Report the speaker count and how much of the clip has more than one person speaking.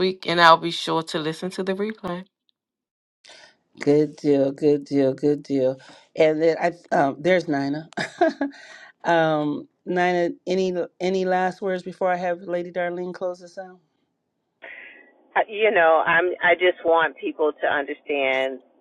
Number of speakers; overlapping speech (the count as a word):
three, no overlap